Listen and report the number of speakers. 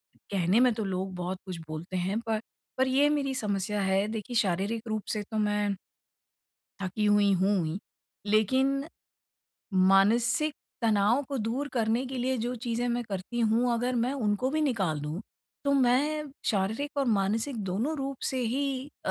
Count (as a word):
one